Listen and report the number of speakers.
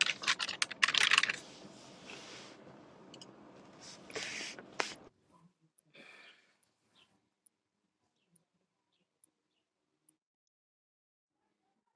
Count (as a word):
zero